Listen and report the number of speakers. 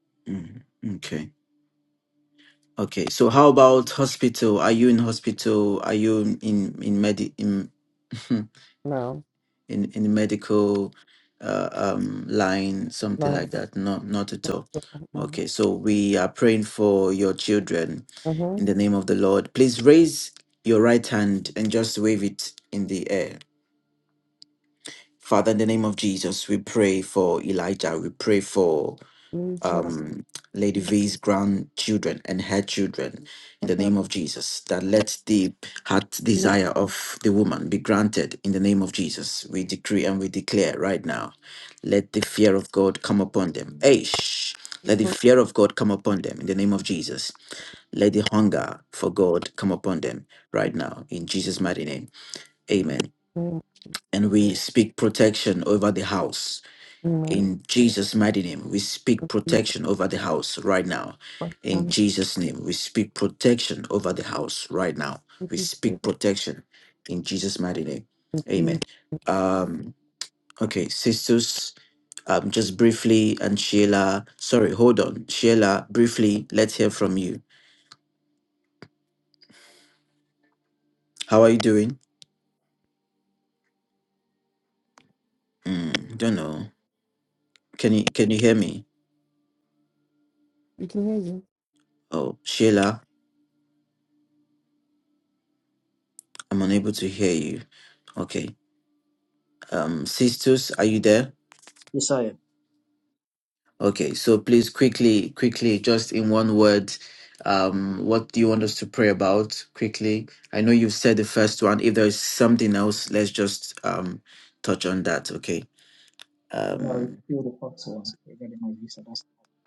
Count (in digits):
3